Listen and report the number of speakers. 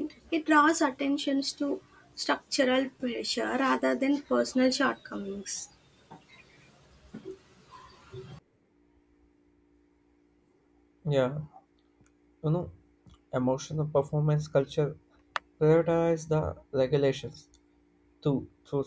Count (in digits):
2